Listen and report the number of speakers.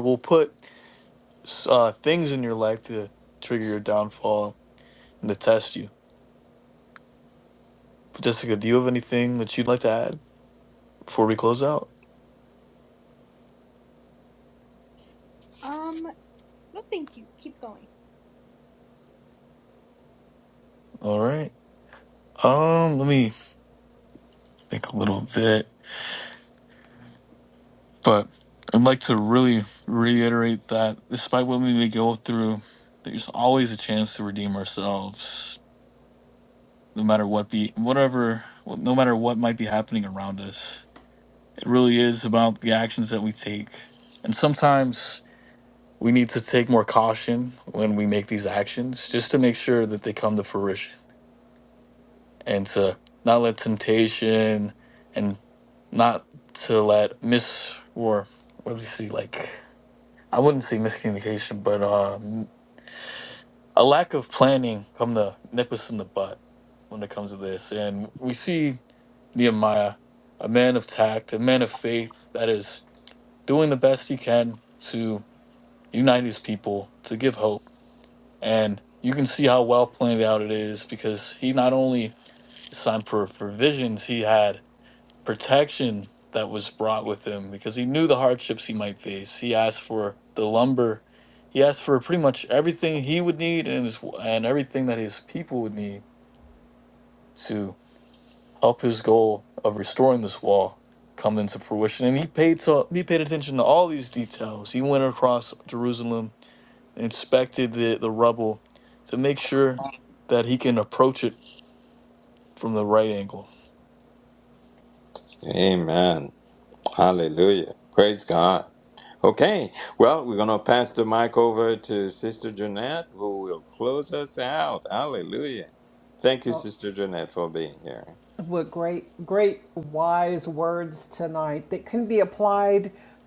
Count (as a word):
four